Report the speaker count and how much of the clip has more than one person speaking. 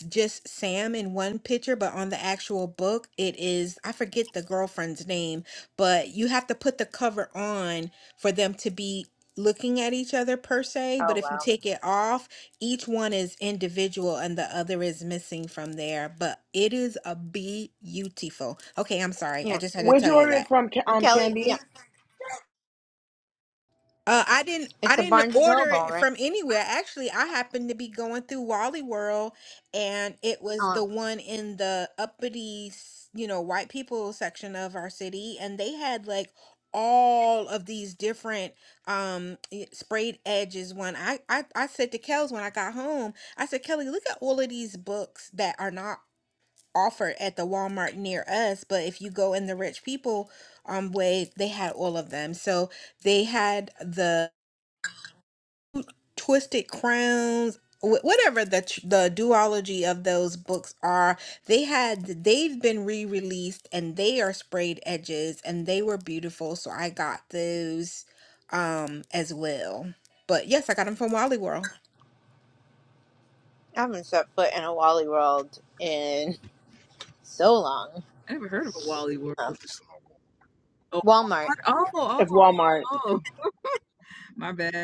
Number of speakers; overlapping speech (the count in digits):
4, about 5%